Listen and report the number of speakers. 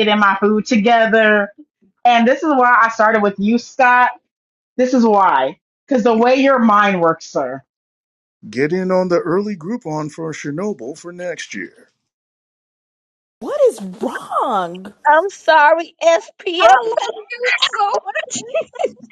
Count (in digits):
5